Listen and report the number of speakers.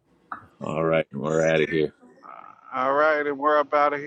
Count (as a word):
two